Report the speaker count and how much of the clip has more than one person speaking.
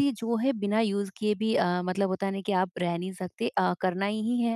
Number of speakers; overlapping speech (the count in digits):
1, no overlap